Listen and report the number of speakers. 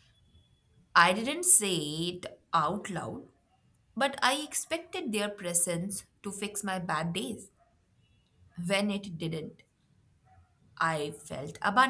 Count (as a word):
one